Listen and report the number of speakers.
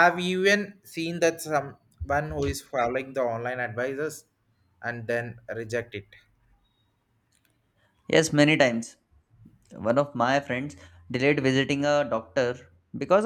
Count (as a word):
two